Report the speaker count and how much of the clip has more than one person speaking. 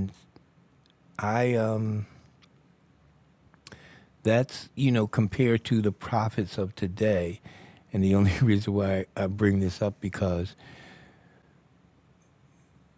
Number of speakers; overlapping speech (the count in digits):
1, no overlap